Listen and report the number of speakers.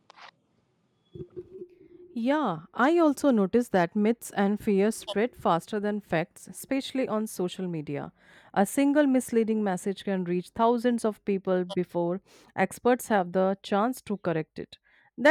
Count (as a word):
one